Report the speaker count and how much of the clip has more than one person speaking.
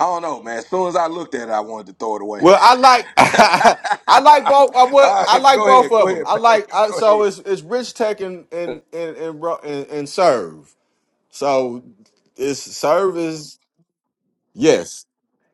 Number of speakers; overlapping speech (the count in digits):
2, about 12%